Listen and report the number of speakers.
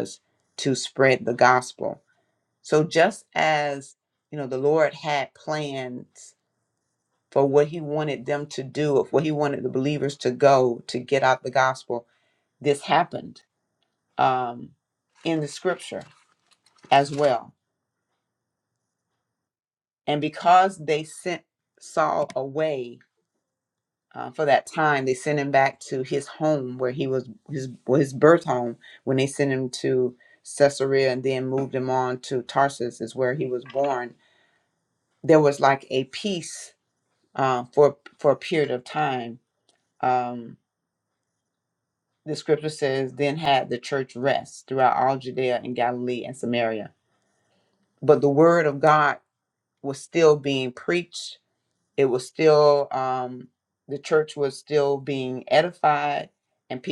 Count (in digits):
1